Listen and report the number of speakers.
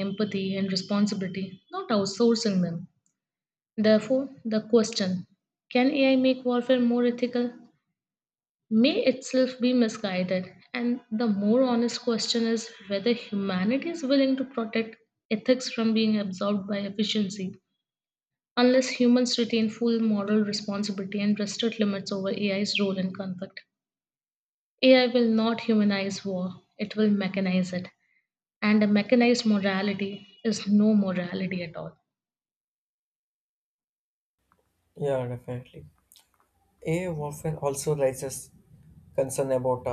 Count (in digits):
2